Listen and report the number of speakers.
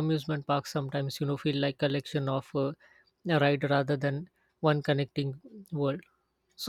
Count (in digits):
1